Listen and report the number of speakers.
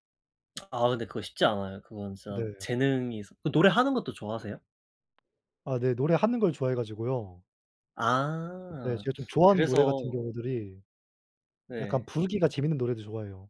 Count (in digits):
2